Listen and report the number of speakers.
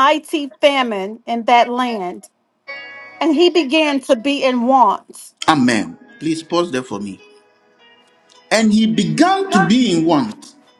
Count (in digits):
2